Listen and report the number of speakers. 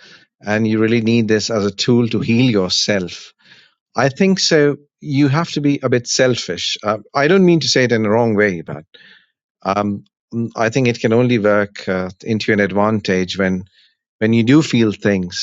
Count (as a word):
one